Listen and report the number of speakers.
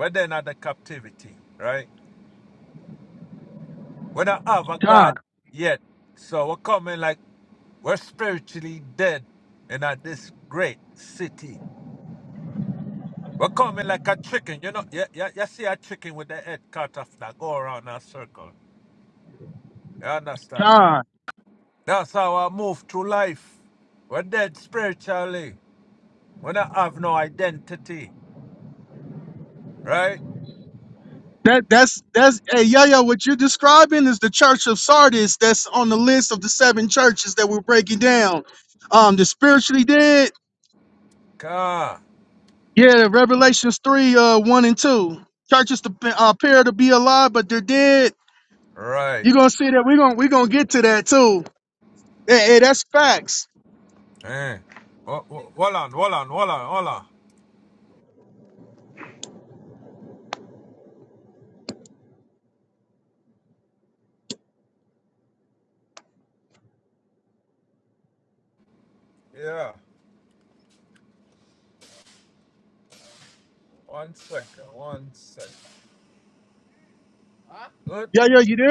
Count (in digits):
2